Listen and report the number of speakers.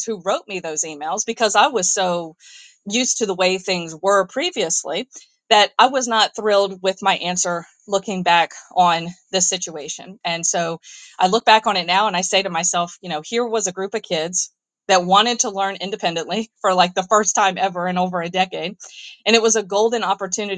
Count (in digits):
1